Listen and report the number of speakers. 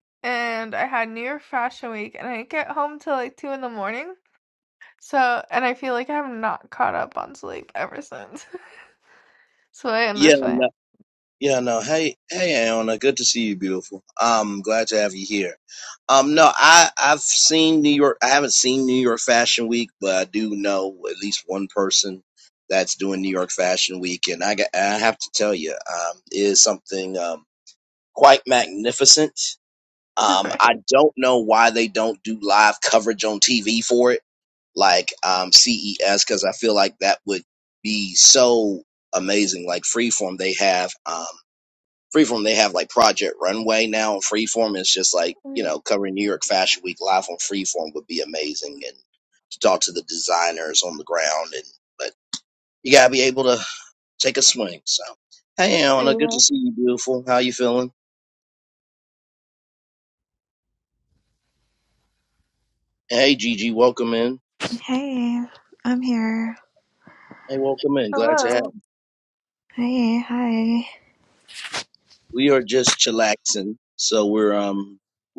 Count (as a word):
three